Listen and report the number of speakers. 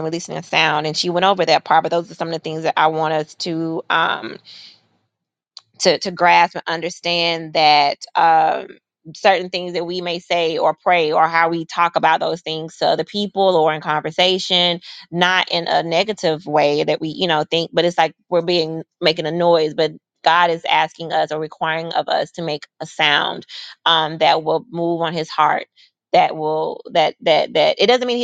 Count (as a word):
one